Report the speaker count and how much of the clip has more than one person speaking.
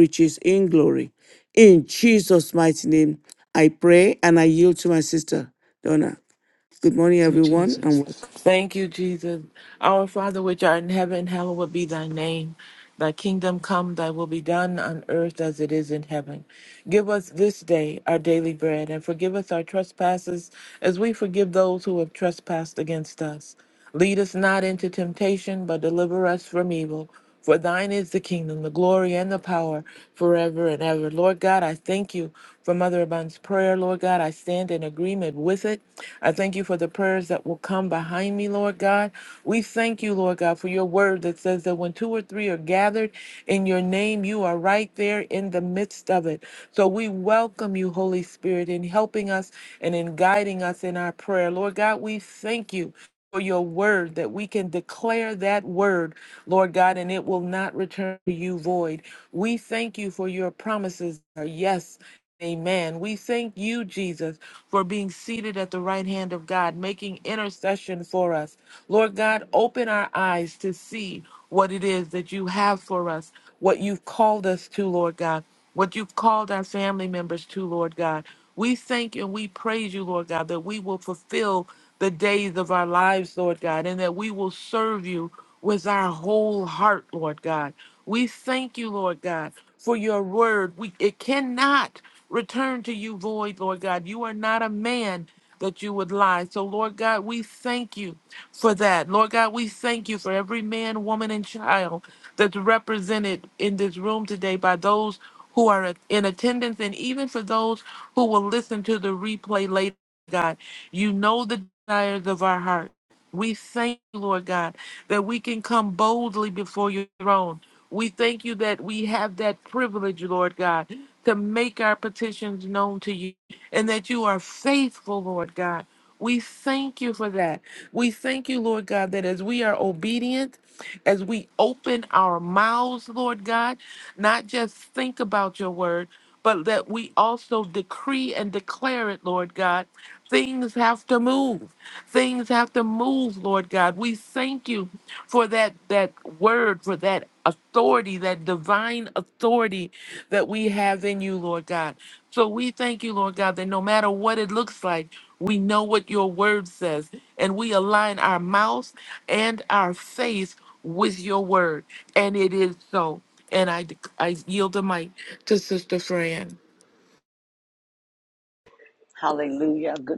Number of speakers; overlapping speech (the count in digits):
3, under 1%